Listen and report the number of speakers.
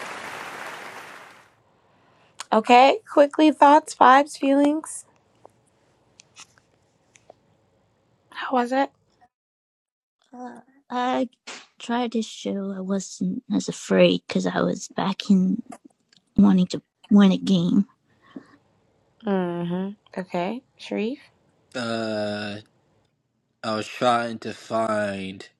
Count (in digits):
3